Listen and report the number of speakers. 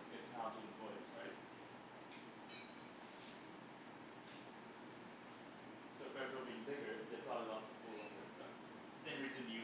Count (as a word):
one